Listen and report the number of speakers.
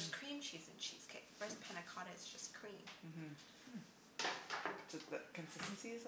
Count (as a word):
two